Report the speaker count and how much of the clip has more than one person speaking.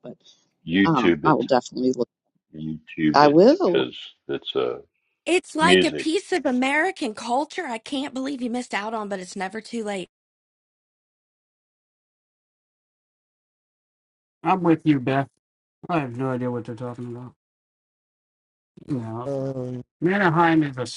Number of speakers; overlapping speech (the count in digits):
4, about 8%